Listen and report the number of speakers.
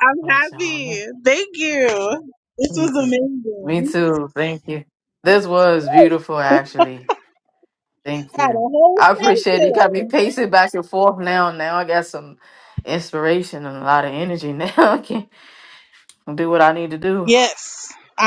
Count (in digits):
2